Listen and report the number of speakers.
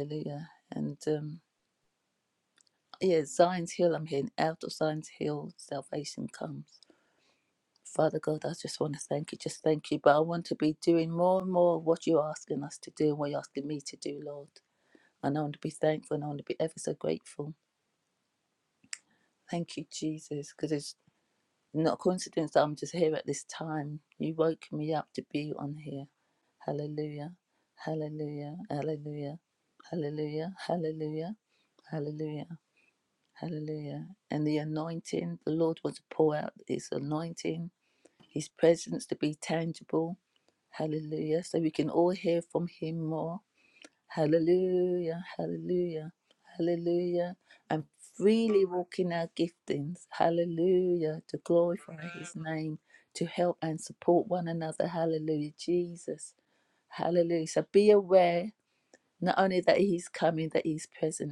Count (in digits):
1